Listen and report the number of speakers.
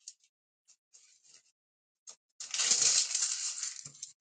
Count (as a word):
zero